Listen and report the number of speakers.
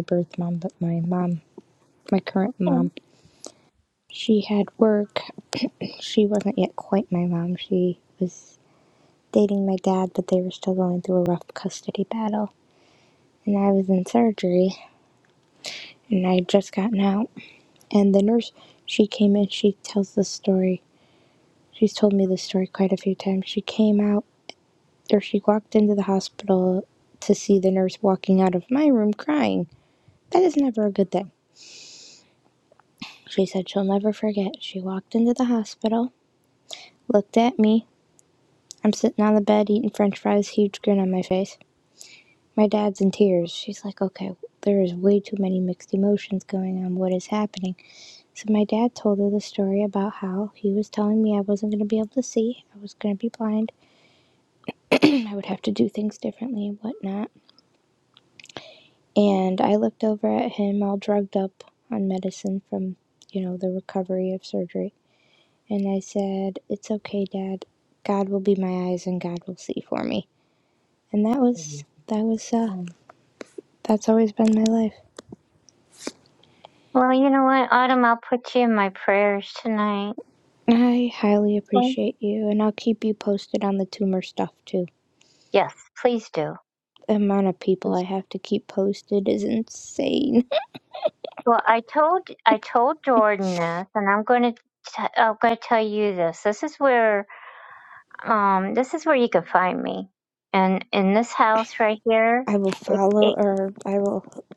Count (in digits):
2